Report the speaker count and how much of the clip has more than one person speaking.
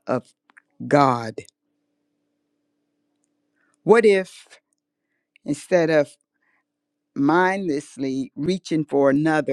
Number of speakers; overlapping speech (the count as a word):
one, no overlap